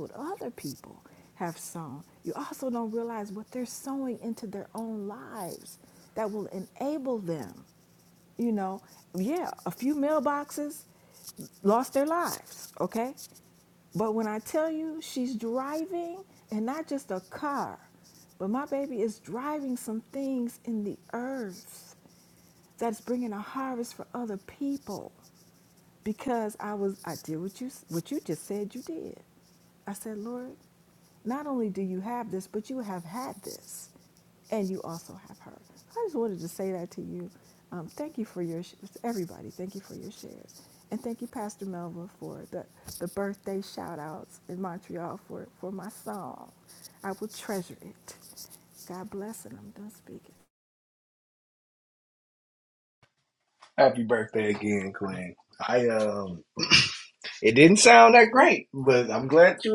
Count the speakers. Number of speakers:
2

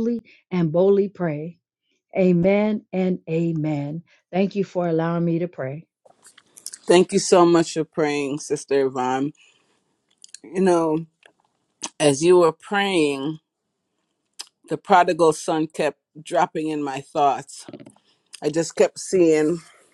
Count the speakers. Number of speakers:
2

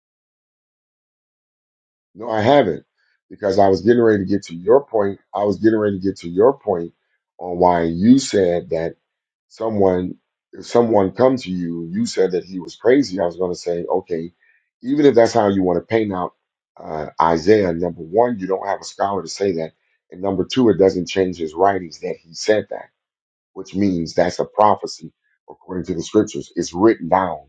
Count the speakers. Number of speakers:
1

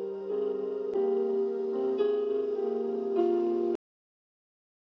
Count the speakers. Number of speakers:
0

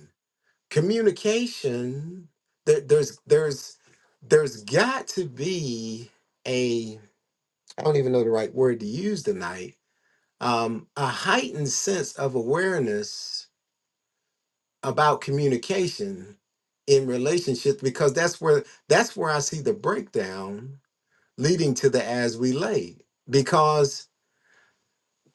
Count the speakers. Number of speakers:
1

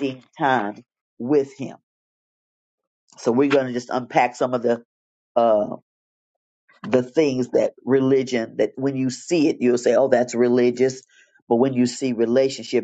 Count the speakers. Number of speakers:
1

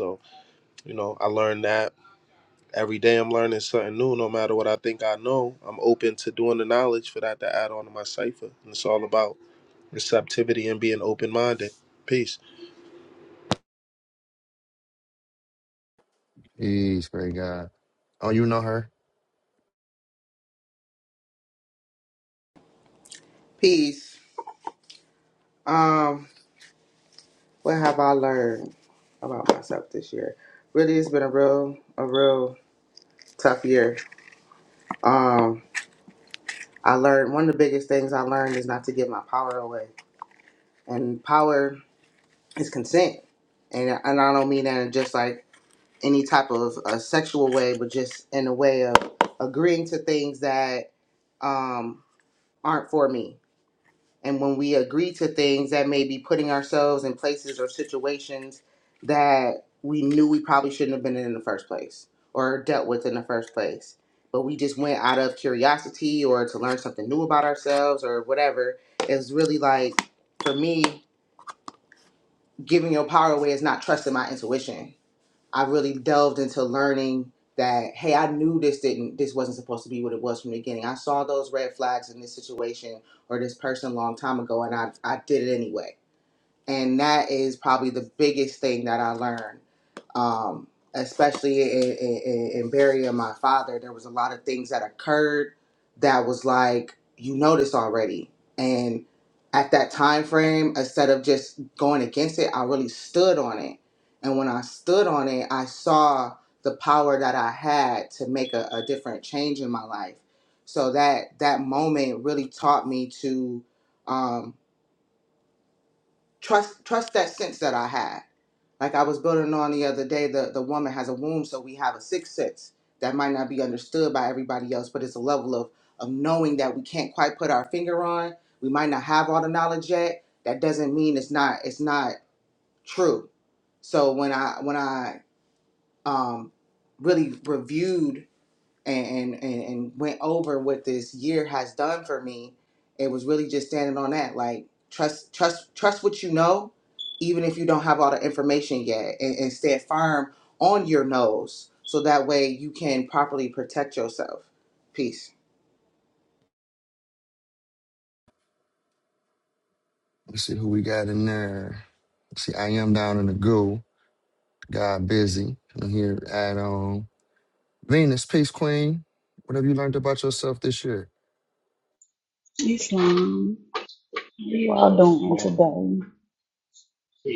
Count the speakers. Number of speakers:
4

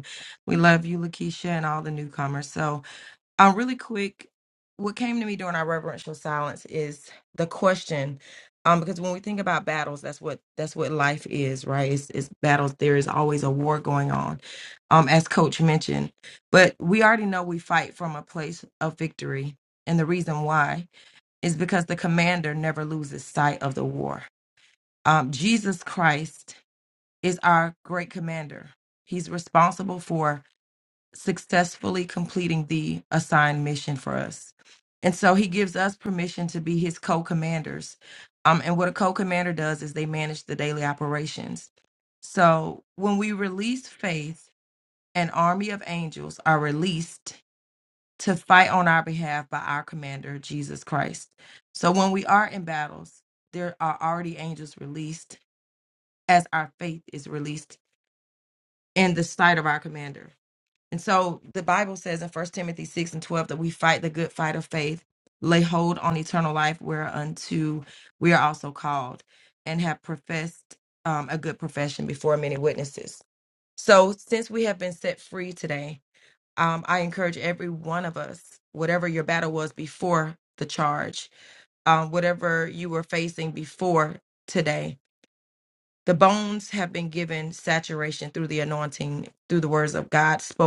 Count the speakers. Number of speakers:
1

